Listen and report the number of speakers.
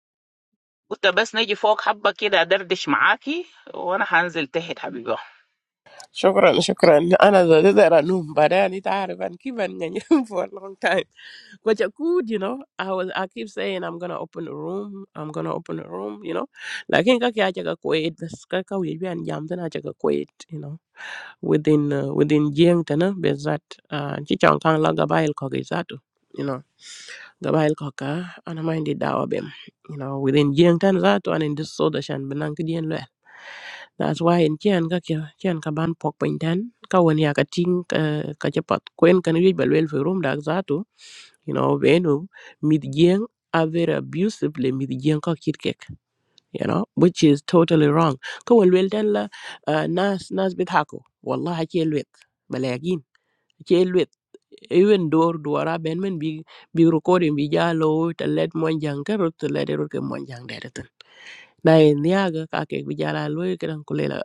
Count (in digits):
2